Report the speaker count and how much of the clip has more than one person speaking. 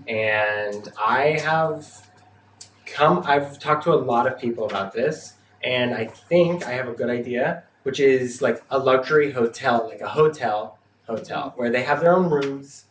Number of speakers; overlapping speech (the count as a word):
one, no overlap